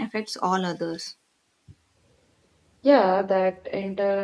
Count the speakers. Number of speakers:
2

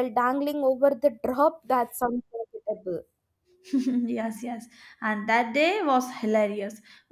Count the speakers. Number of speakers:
2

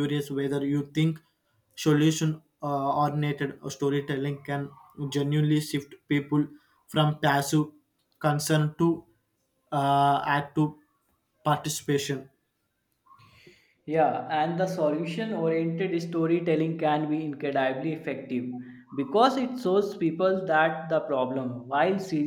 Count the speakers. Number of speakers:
2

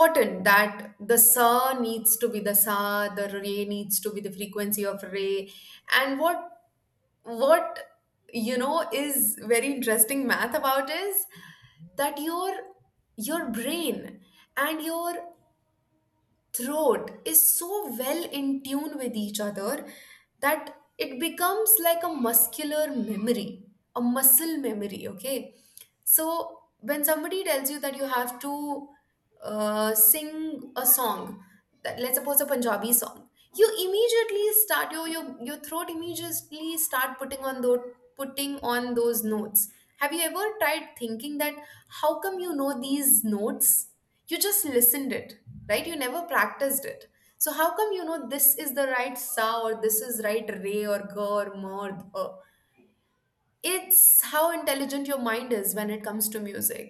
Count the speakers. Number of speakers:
1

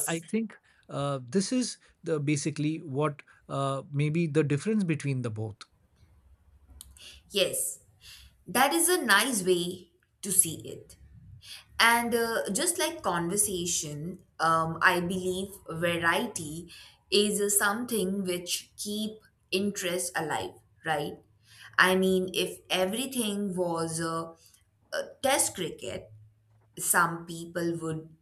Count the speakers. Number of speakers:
2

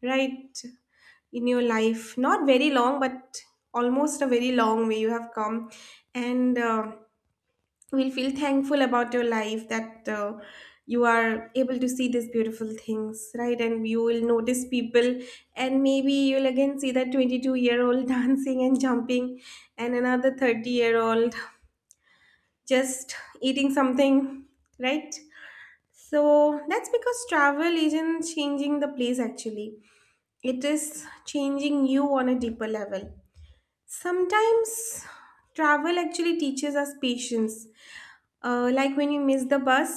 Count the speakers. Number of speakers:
1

